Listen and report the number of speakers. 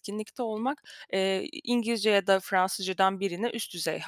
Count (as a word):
one